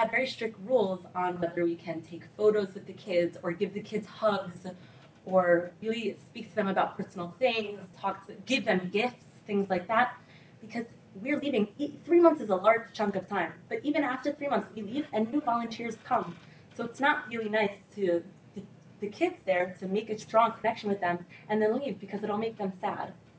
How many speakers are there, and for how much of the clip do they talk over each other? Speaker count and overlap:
1, no overlap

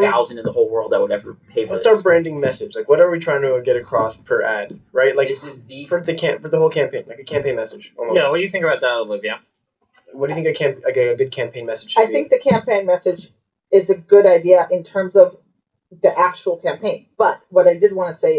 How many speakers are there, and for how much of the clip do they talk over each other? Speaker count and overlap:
4, about 5%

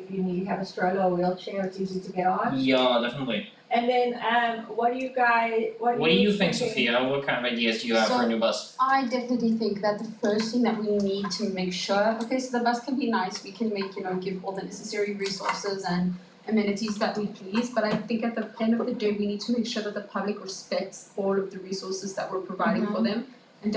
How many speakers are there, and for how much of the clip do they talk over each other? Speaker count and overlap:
3, about 7%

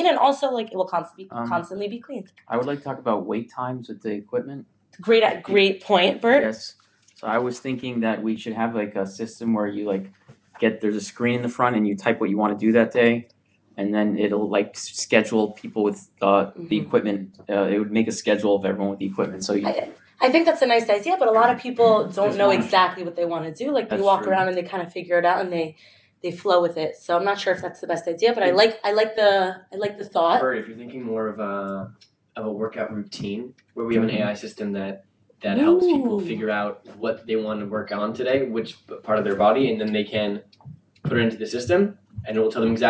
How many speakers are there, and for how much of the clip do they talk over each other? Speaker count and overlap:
3, about 7%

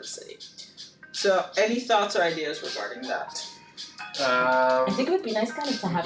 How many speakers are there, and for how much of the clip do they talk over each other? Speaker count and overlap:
3, about 7%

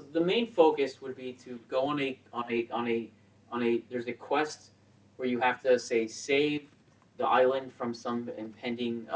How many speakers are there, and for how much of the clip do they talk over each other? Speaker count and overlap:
1, no overlap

